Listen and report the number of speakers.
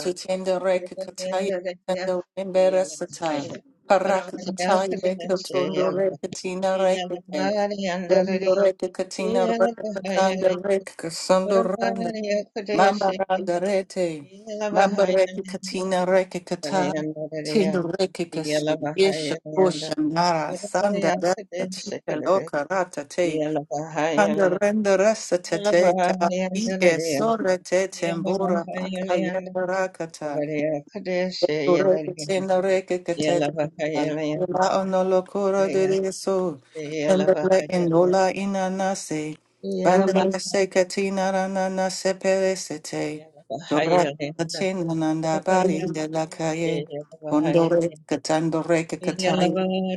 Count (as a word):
two